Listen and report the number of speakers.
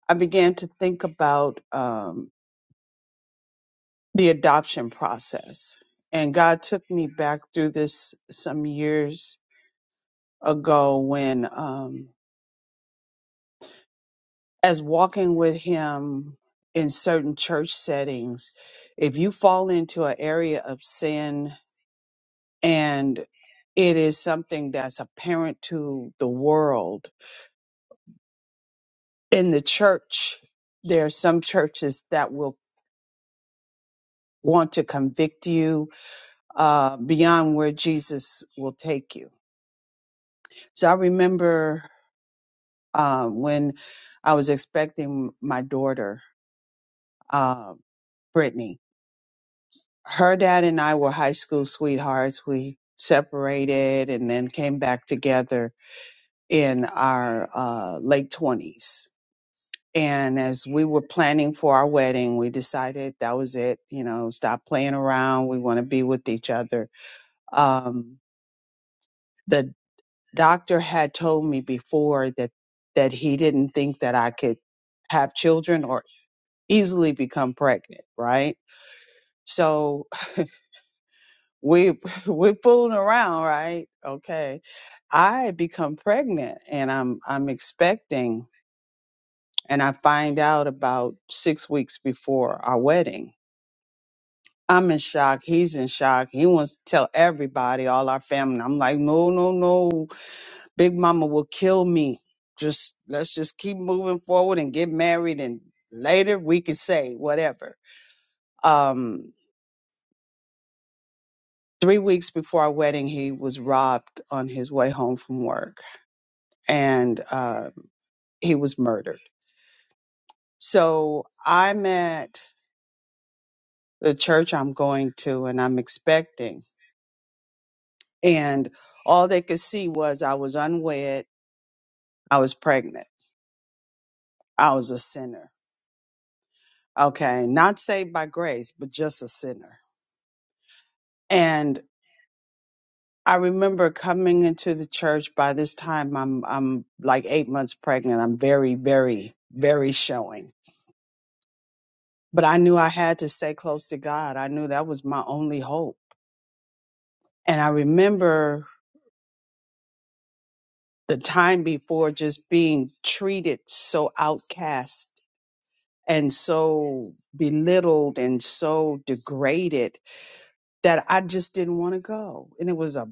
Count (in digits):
1